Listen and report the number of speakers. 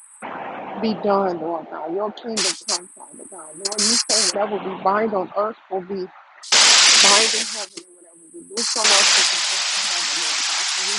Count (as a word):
one